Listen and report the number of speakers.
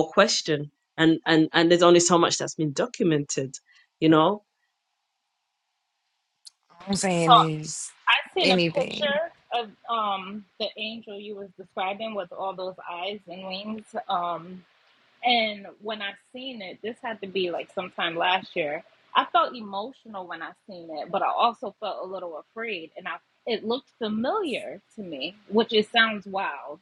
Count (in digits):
3